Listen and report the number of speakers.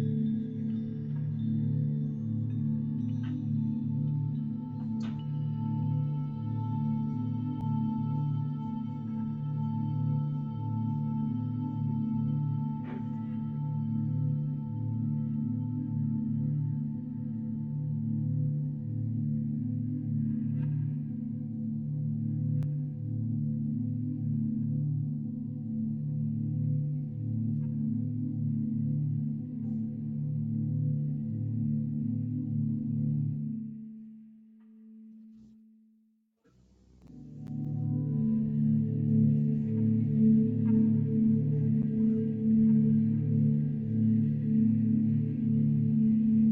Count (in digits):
0